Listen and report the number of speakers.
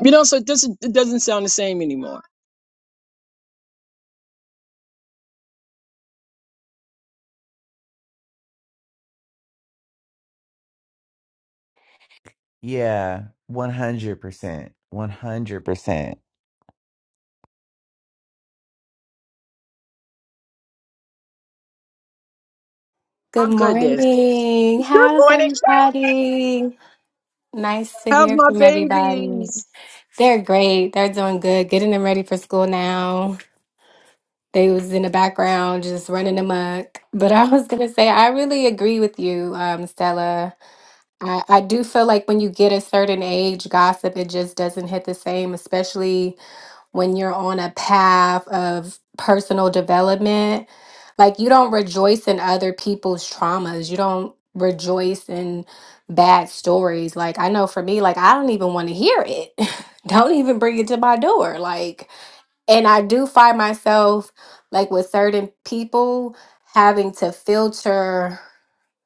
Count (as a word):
three